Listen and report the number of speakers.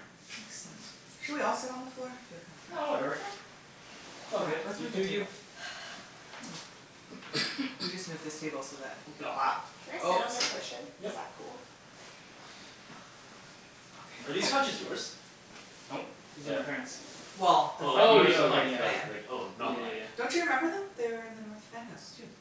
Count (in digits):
4